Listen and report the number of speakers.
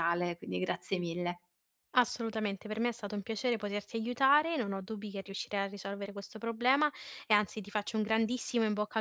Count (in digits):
2